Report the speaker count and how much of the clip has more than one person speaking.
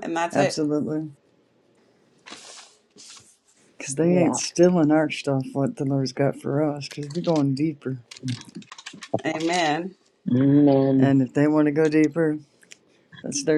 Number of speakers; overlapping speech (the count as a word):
three, about 4%